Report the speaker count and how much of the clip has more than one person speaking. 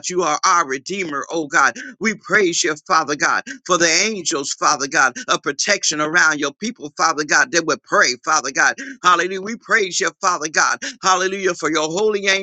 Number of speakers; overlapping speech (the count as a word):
one, no overlap